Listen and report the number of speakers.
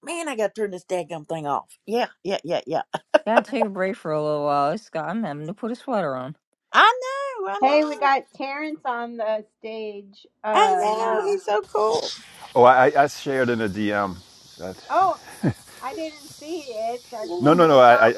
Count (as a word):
four